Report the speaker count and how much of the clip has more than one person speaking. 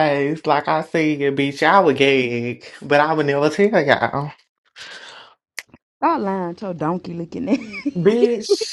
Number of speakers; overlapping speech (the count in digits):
2, no overlap